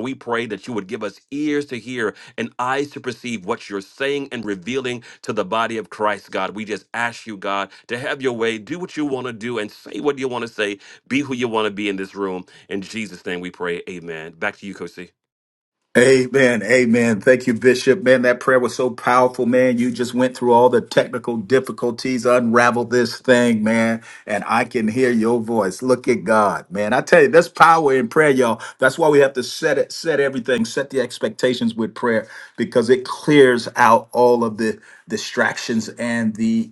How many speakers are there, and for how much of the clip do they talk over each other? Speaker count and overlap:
2, no overlap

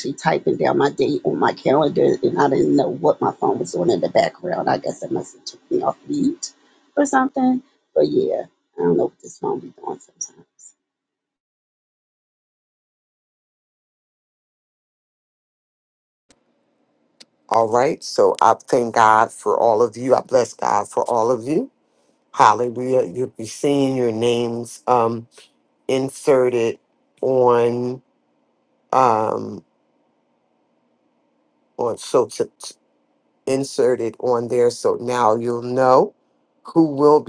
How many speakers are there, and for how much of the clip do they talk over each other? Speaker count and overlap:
2, no overlap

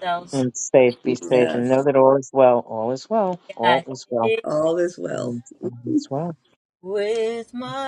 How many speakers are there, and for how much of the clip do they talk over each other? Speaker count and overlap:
3, about 15%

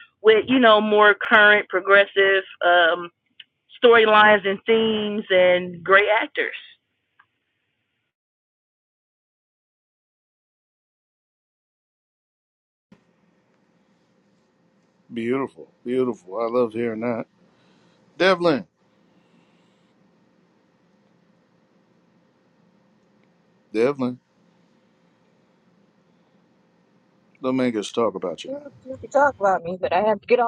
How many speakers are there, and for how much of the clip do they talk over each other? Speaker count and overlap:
3, under 1%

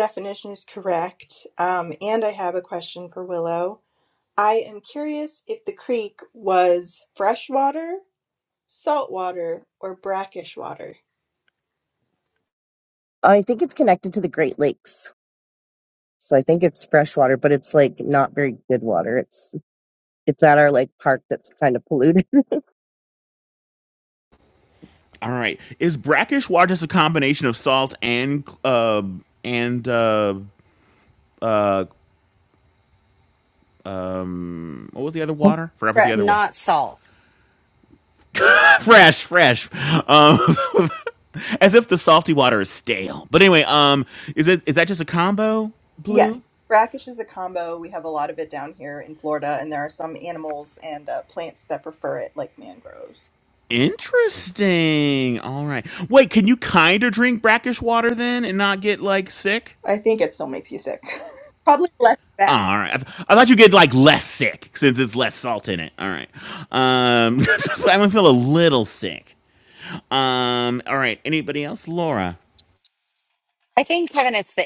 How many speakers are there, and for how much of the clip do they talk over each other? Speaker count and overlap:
4, about 1%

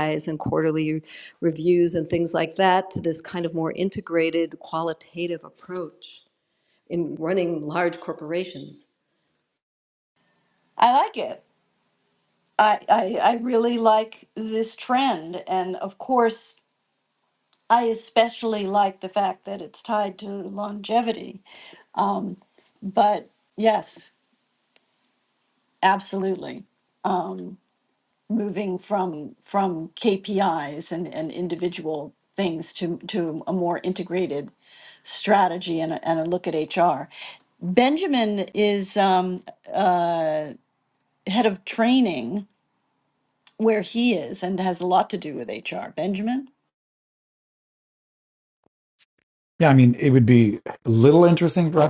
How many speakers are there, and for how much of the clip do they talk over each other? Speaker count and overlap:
3, no overlap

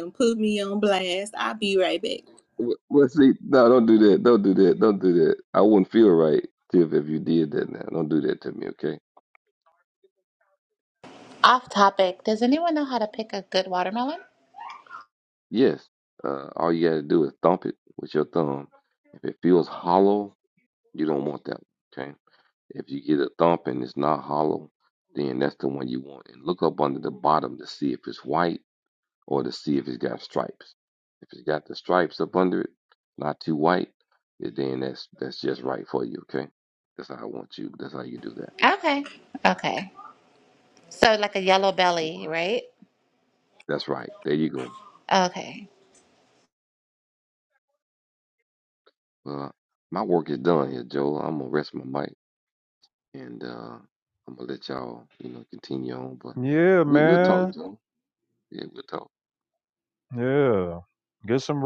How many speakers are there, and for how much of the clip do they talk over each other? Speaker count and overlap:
4, about 1%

